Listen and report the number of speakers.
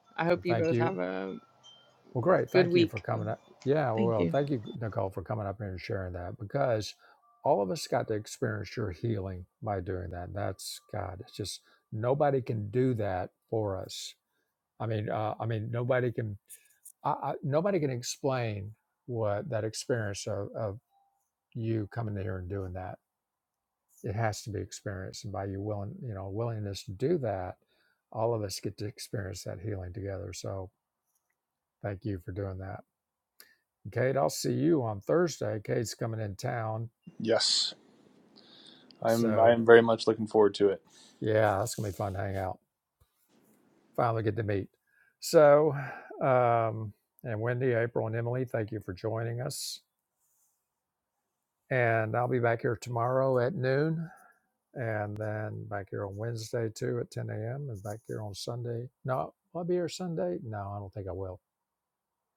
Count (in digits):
3